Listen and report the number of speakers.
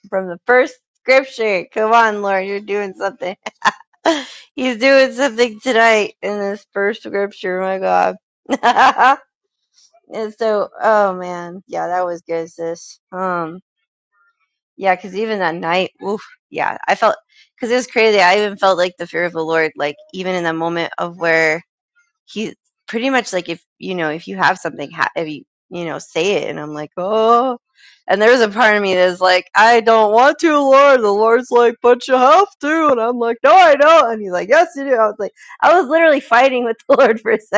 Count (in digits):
1